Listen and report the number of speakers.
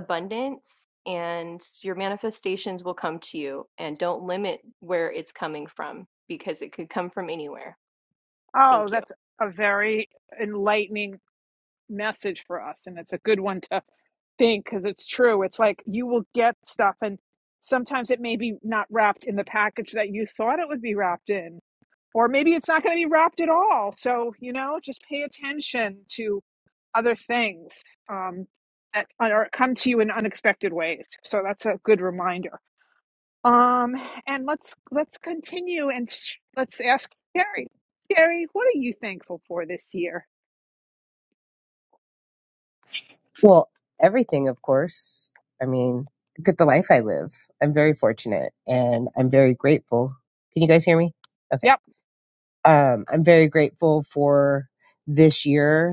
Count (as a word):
three